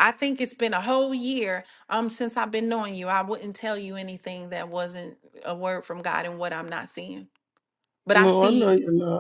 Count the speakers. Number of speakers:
2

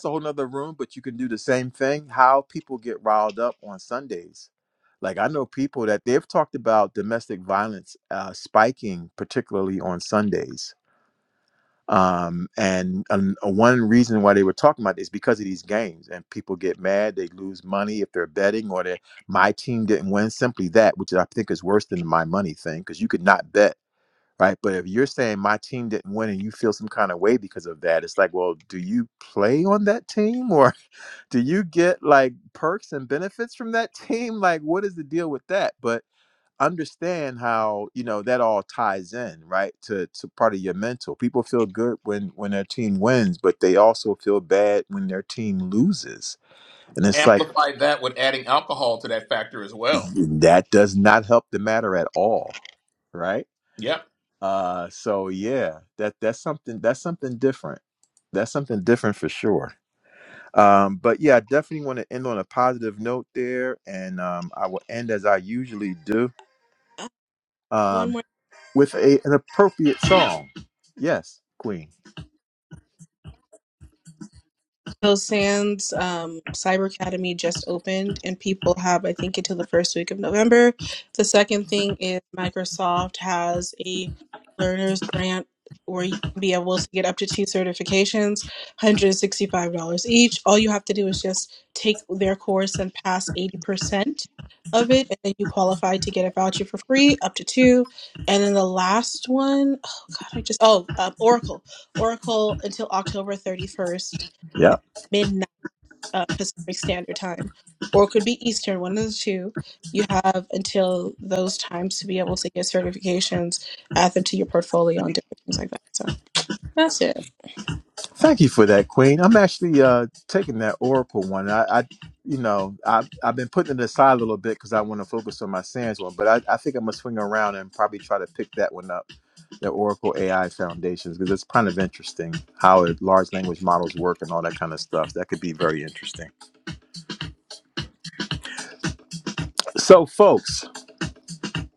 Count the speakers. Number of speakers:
3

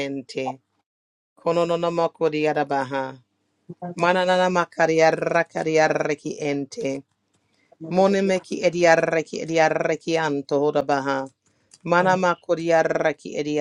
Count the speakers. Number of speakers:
1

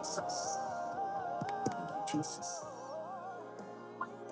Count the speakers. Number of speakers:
0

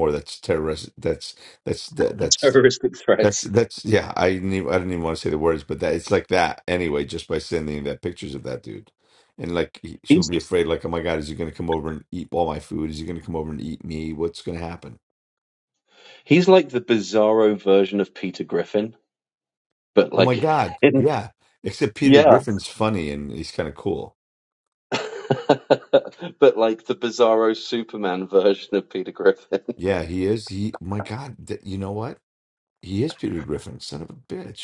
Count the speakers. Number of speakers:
2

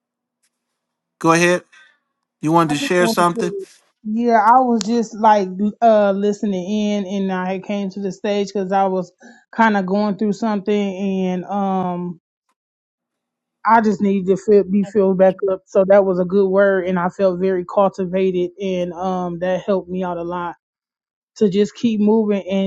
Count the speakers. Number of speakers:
2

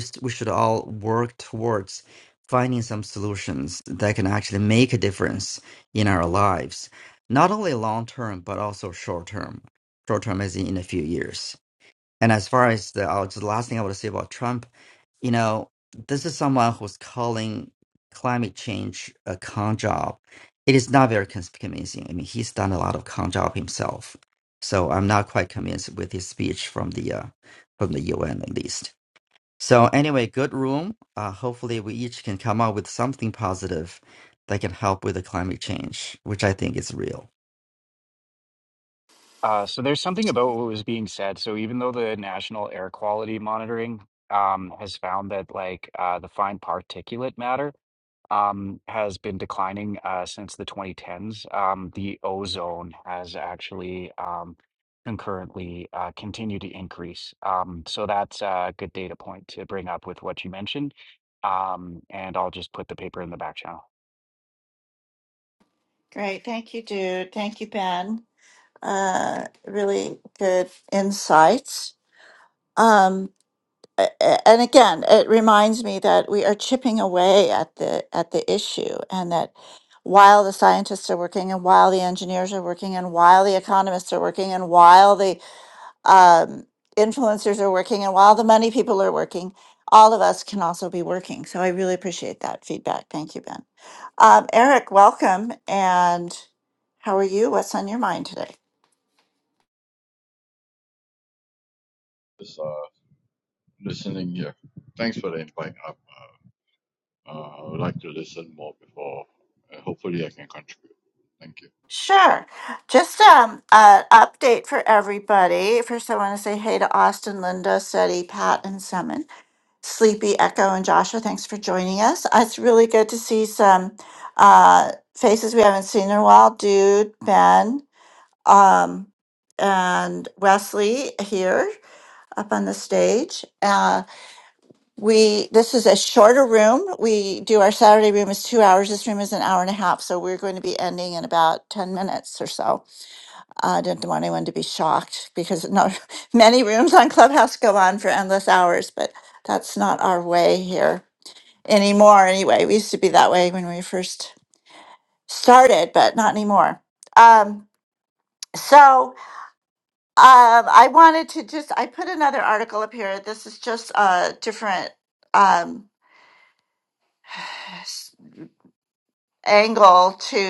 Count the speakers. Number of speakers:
4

